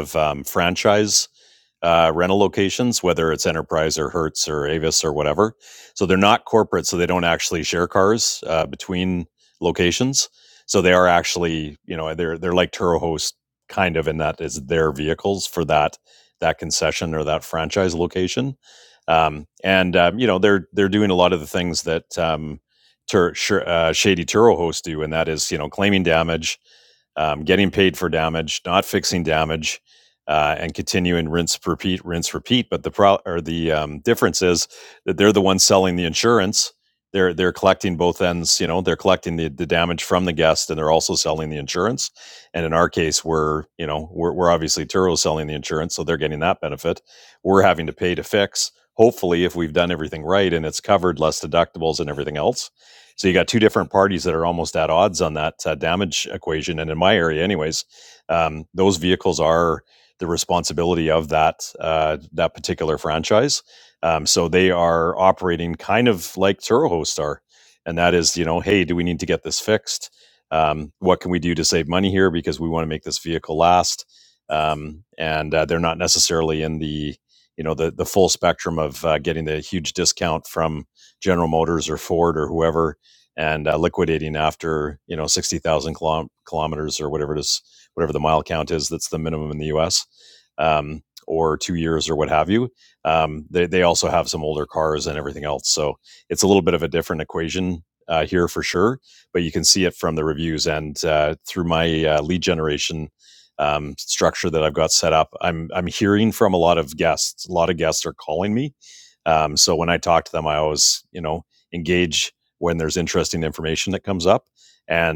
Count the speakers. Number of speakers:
1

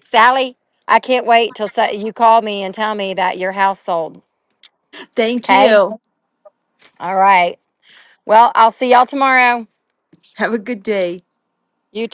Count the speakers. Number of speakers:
2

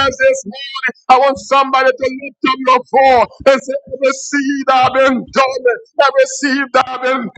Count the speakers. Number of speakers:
1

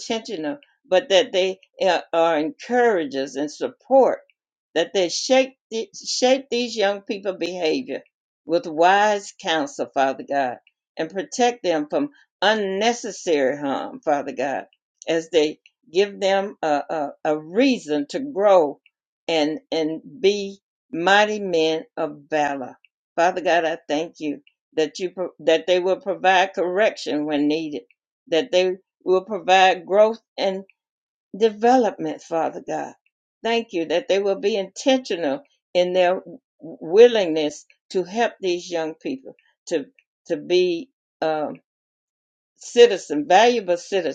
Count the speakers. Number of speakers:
1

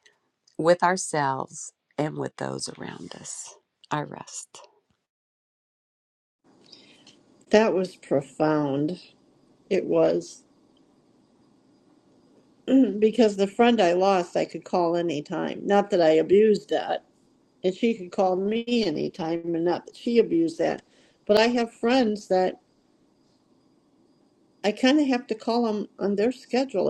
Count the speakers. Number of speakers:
2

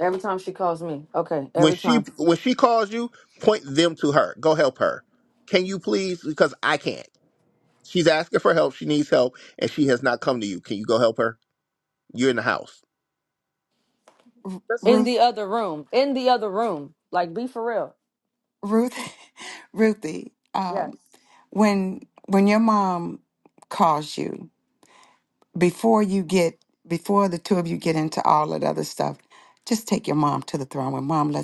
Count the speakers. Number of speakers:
3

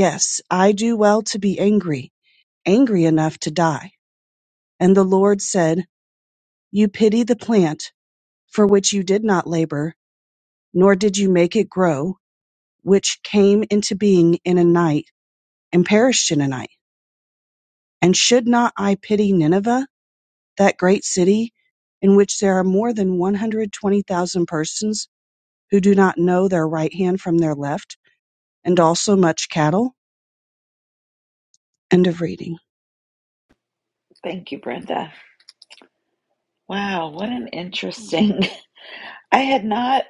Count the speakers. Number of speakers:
2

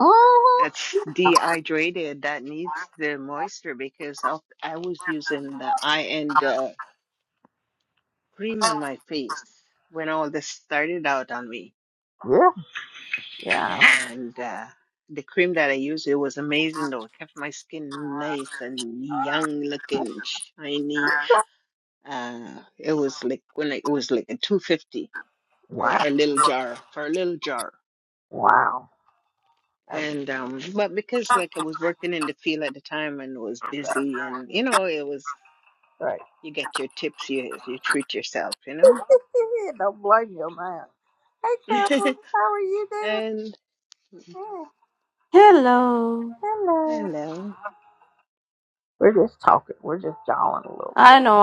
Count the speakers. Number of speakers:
3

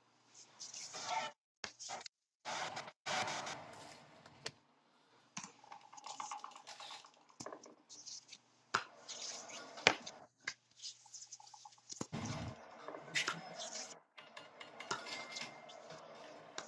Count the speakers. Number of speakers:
0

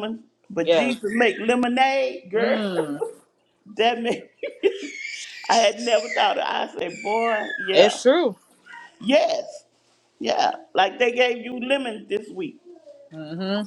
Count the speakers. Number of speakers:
2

